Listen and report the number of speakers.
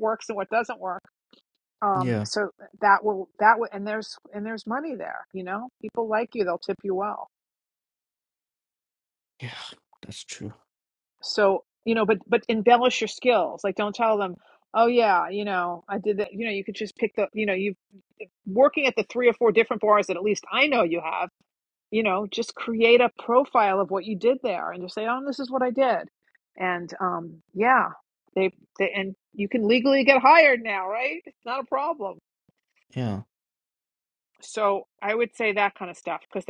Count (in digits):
2